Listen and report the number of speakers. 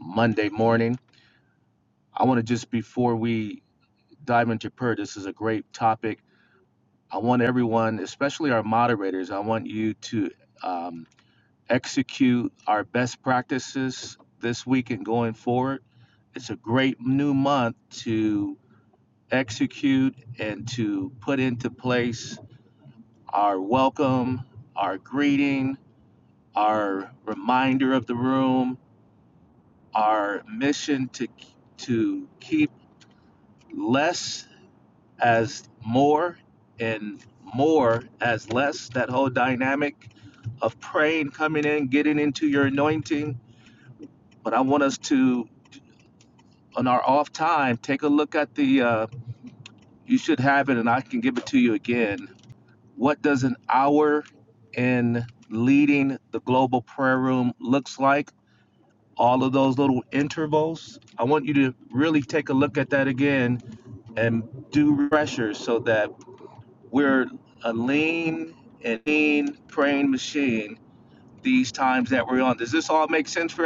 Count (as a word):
one